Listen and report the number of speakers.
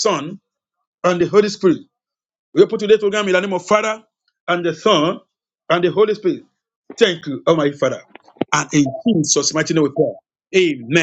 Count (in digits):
1